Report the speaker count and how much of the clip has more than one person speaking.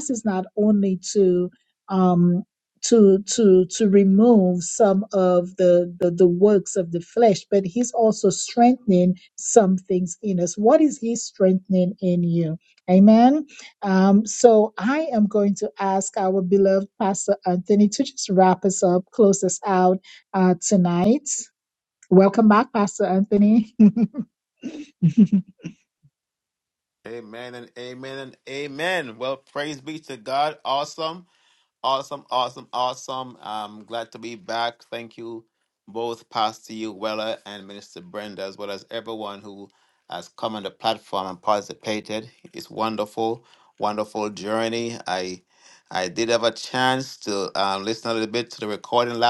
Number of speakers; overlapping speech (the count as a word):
two, no overlap